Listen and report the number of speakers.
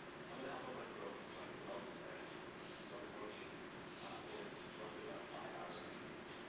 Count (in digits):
1